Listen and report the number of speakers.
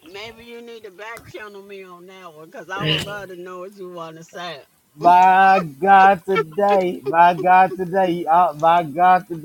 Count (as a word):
two